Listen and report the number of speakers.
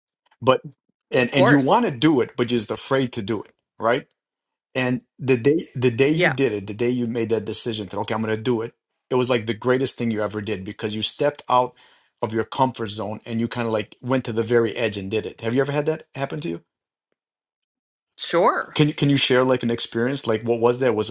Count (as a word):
two